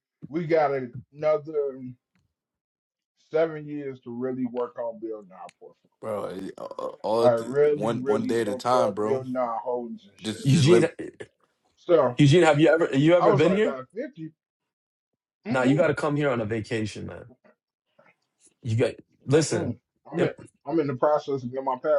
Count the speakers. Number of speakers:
3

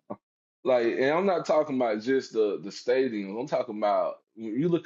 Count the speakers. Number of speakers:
1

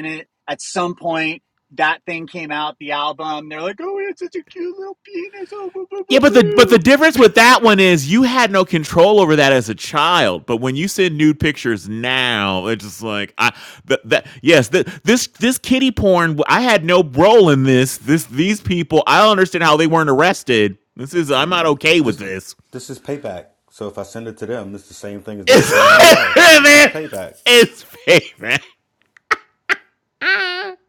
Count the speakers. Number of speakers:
3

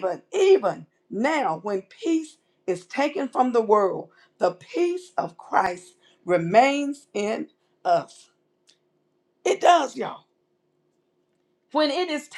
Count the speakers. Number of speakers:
1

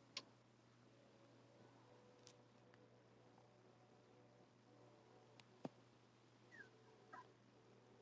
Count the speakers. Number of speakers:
0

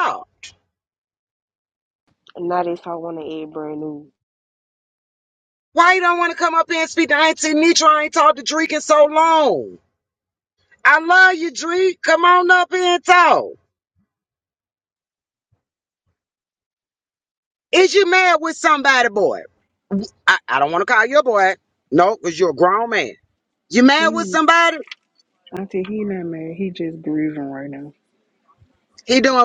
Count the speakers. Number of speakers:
3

